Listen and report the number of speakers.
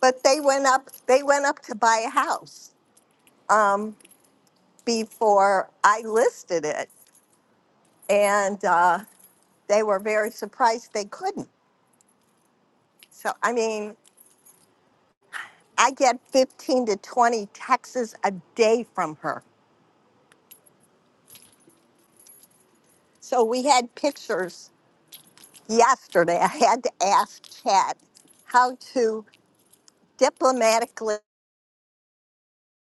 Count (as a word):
one